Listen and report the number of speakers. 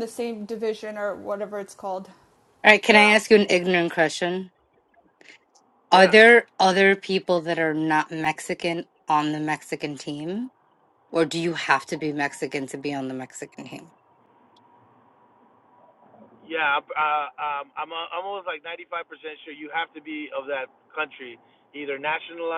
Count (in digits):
3